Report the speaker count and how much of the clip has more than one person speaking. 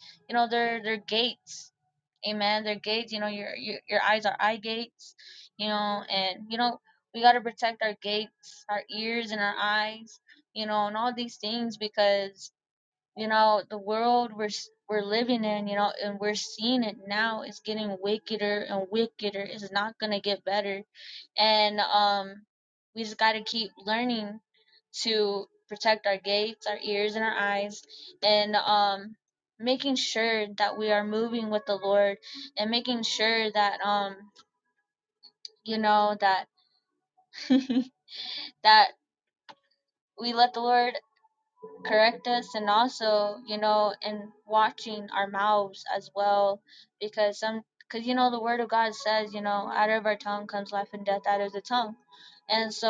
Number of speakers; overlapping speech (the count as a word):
one, no overlap